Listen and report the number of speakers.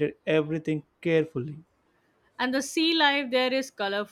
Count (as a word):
two